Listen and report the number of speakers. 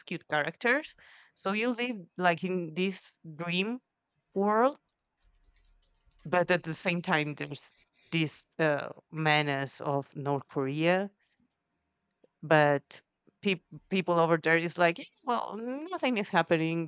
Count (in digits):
1